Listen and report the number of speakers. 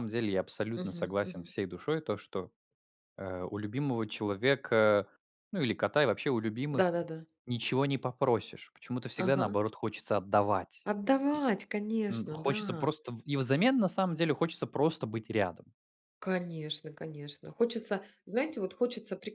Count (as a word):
two